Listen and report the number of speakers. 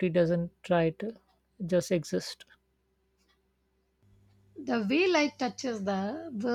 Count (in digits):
2